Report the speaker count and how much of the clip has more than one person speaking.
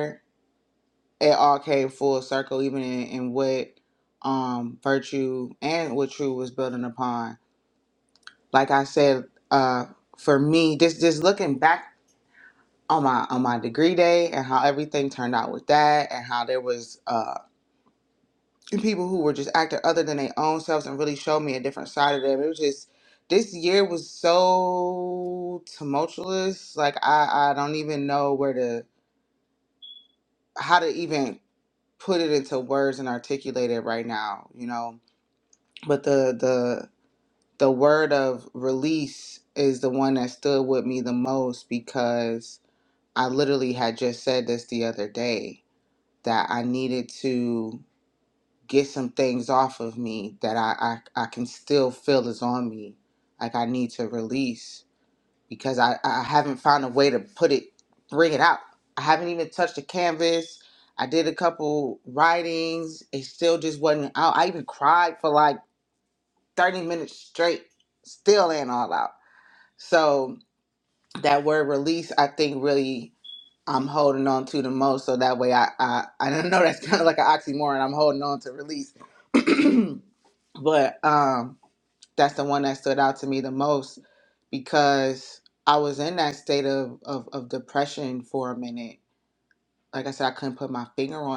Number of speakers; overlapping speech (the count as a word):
one, no overlap